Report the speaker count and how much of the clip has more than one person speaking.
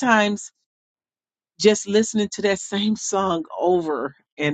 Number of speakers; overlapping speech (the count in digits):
1, no overlap